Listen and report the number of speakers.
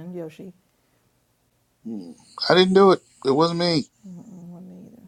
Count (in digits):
2